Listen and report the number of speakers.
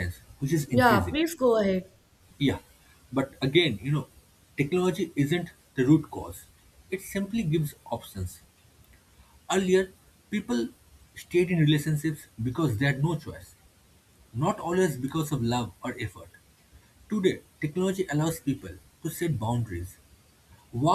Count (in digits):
2